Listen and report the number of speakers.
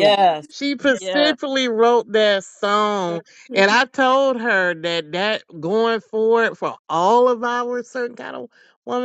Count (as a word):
two